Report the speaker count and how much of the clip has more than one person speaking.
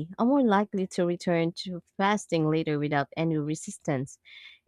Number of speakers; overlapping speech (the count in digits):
1, no overlap